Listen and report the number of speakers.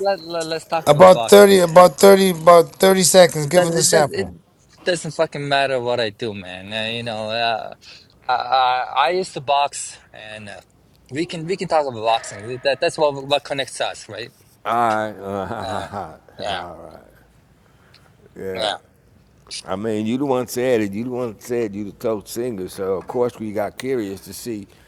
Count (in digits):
3